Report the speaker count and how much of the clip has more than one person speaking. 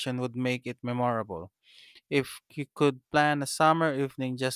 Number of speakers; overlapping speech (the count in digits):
1, no overlap